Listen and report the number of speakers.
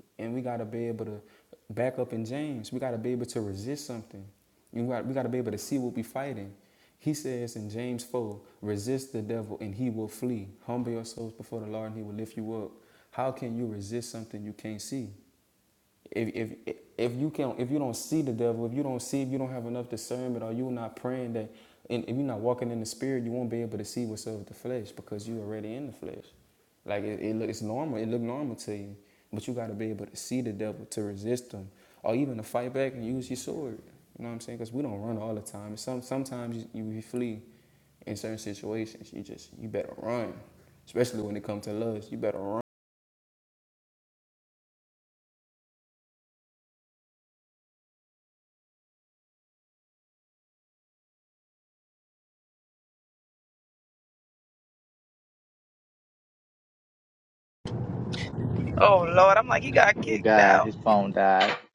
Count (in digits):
3